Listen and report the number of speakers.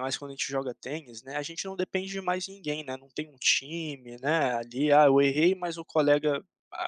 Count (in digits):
1